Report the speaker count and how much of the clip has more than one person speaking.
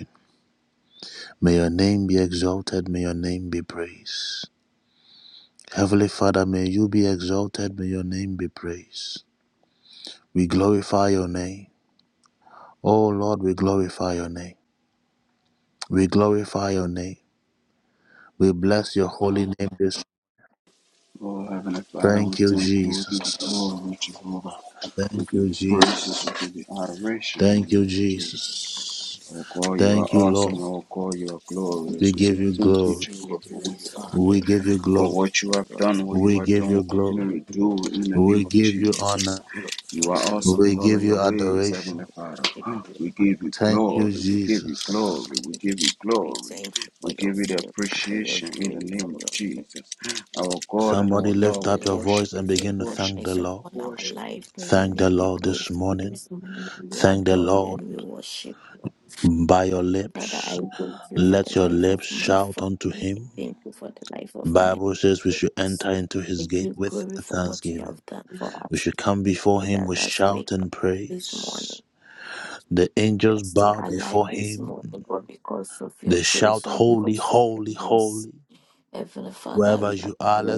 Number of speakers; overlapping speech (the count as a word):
three, about 42%